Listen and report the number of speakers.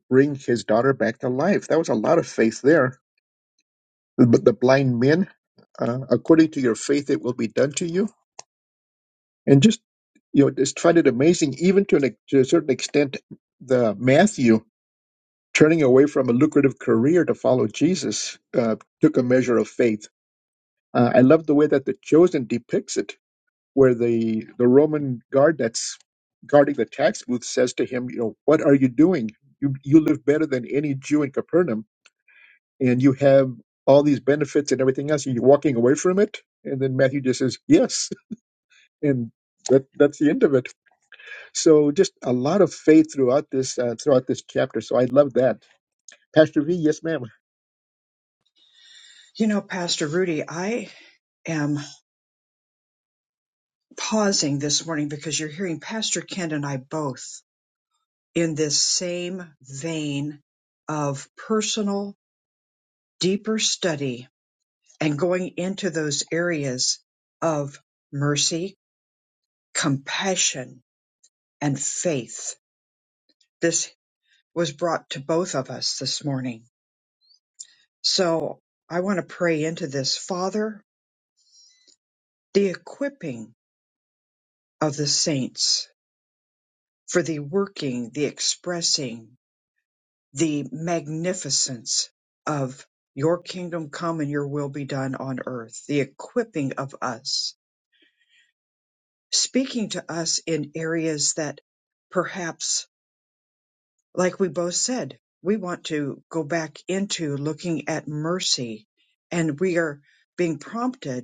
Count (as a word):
two